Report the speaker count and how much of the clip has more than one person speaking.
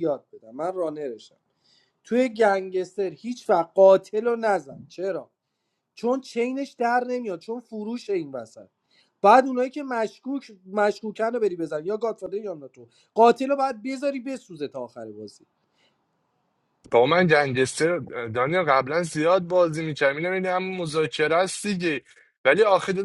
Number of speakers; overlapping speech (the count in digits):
2, no overlap